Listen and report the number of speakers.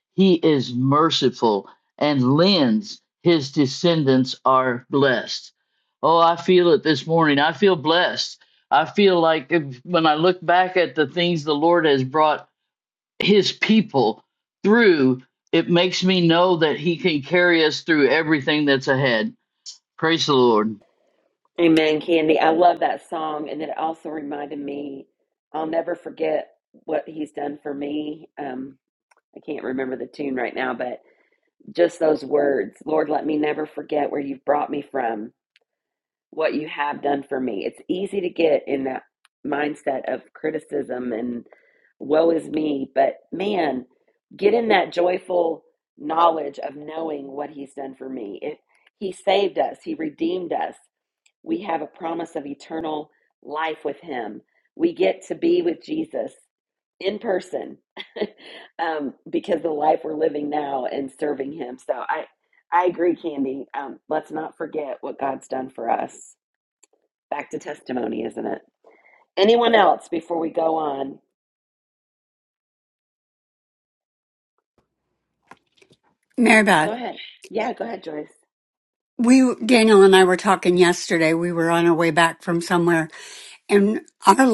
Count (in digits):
3